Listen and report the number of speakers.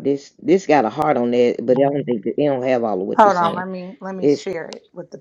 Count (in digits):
2